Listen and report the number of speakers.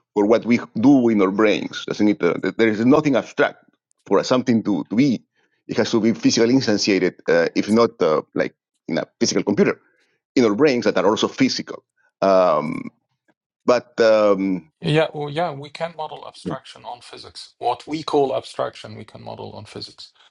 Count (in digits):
2